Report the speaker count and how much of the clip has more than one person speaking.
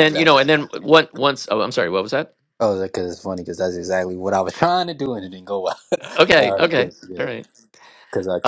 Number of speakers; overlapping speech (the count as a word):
two, about 20%